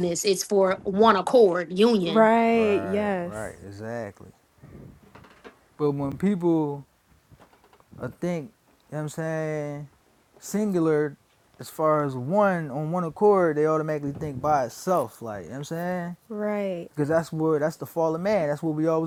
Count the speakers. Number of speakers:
3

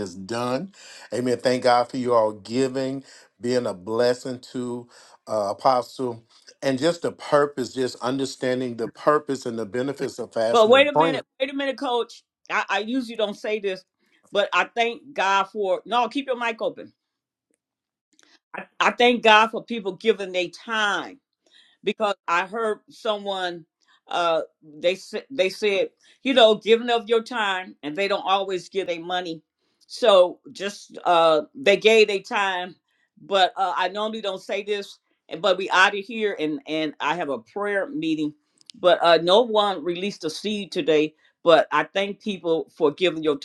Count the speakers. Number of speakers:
2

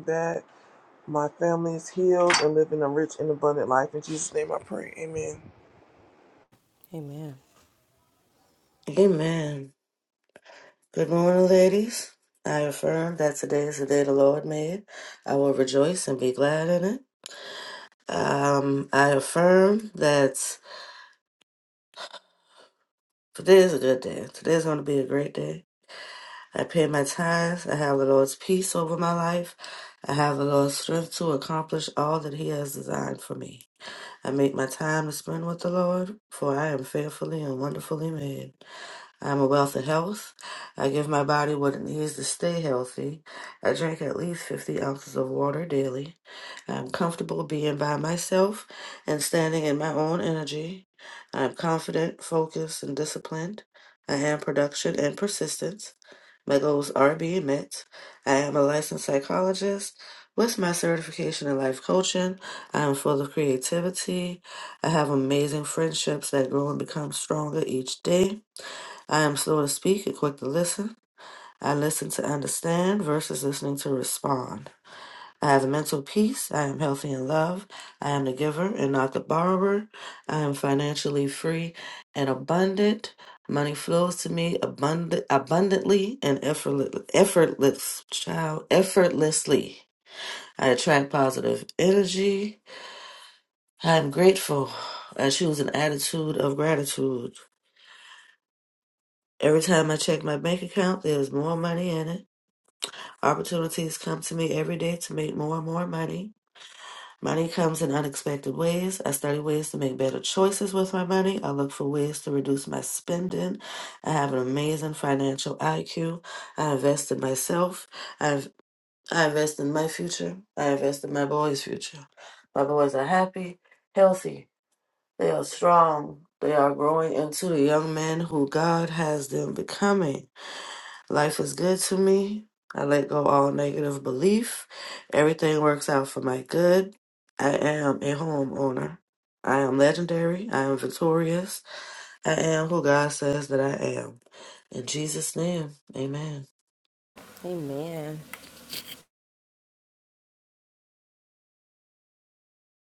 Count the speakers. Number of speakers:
3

